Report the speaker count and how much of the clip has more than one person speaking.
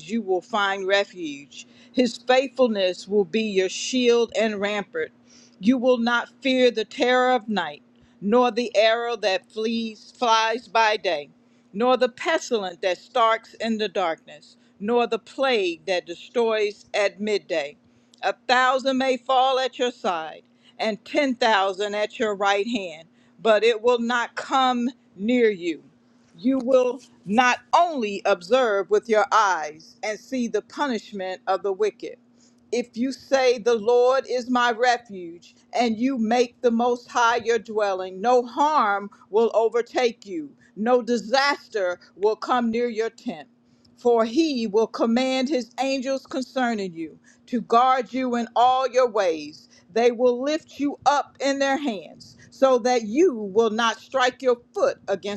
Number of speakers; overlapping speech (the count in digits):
1, no overlap